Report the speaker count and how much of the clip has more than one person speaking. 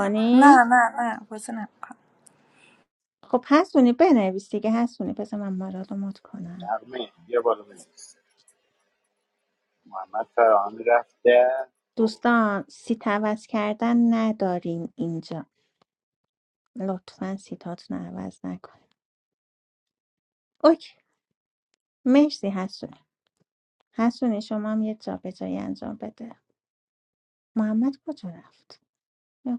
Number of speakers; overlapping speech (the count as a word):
three, about 3%